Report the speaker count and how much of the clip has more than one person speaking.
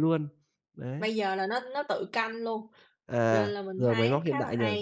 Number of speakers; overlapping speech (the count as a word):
two, about 33%